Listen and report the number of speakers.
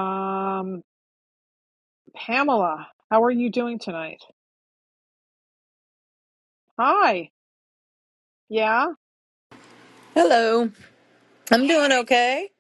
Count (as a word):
two